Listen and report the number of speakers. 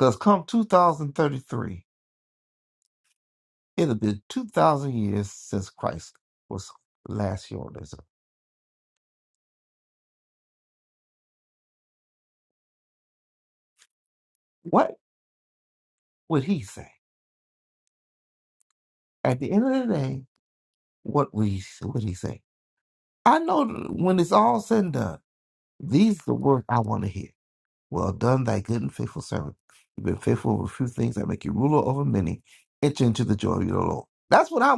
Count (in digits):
1